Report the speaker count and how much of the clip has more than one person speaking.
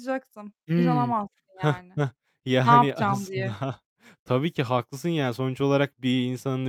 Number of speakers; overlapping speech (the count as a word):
two, about 23%